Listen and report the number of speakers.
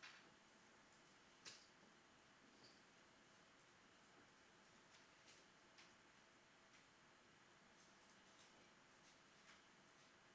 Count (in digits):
0